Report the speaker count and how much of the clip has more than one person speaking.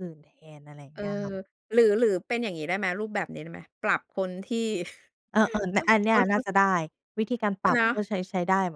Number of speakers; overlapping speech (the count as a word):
two, about 9%